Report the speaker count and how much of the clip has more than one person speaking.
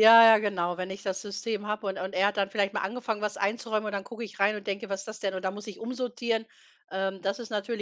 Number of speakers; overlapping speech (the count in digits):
1, no overlap